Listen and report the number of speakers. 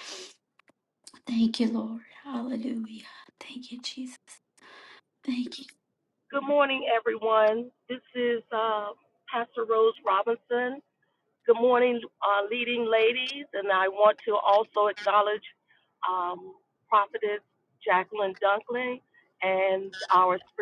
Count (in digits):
2